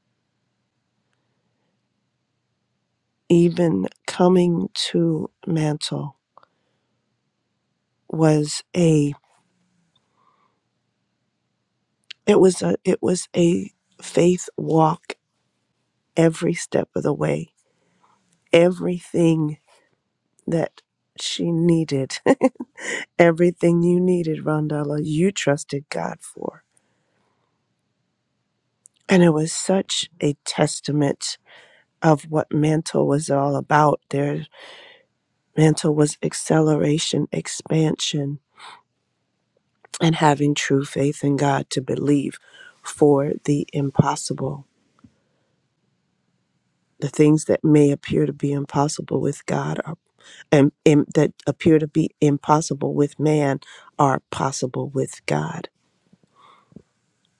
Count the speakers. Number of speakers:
1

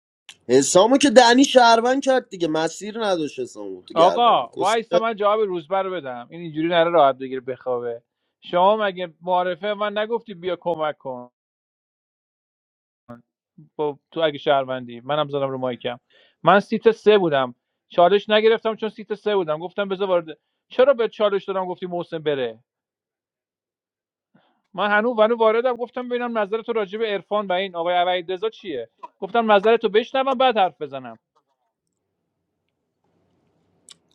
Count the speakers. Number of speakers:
2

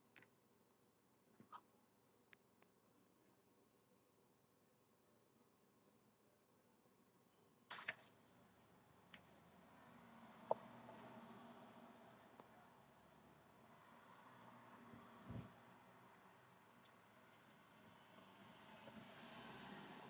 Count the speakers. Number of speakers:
0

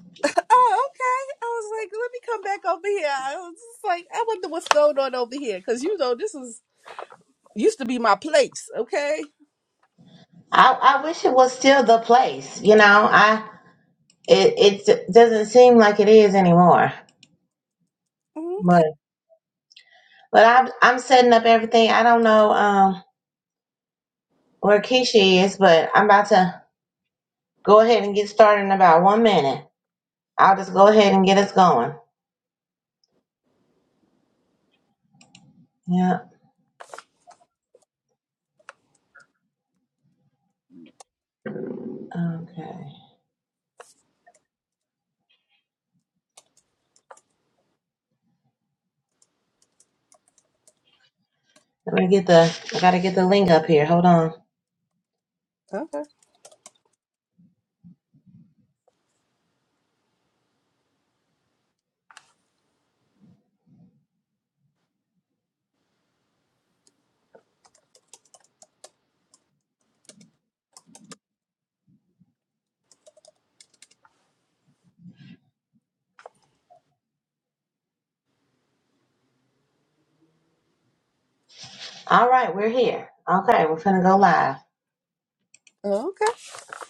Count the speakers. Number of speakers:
2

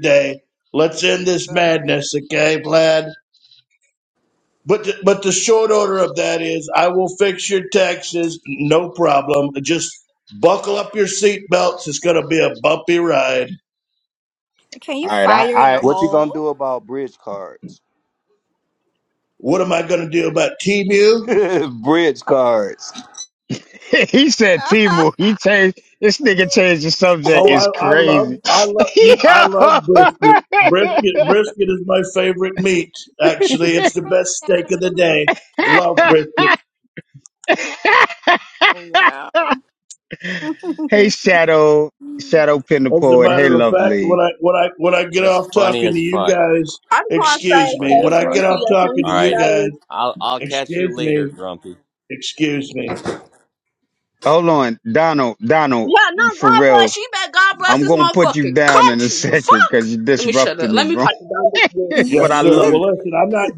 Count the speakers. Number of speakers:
6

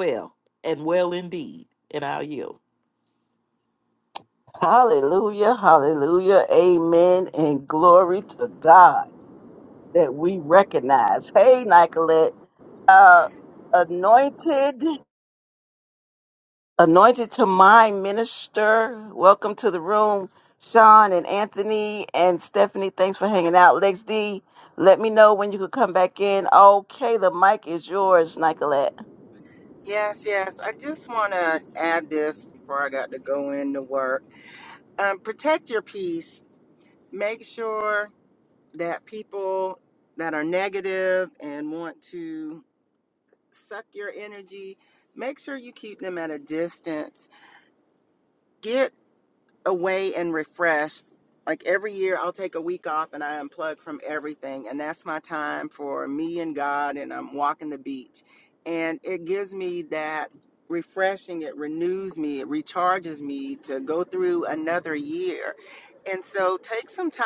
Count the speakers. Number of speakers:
3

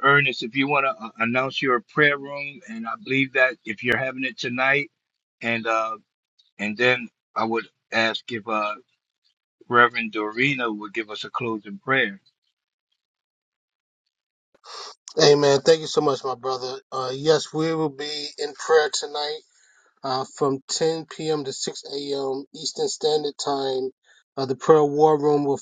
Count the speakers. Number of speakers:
2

